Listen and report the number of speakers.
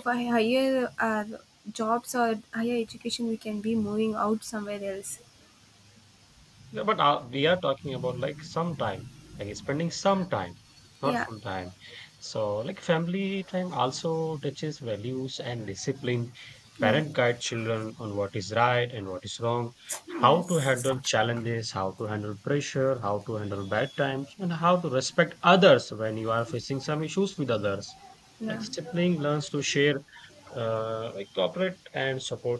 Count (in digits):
2